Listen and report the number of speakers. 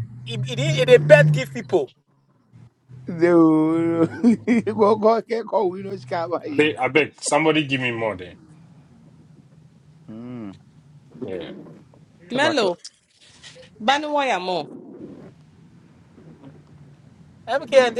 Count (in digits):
4